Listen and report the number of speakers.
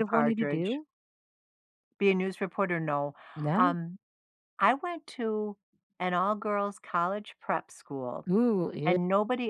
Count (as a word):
two